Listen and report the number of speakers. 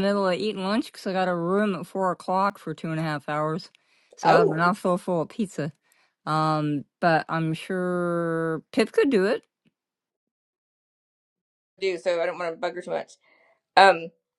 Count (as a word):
two